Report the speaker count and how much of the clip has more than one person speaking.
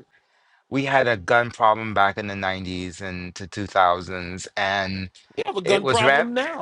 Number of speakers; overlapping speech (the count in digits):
2, about 9%